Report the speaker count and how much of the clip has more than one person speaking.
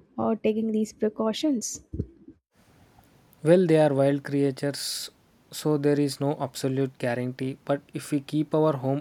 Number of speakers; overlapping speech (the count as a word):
two, no overlap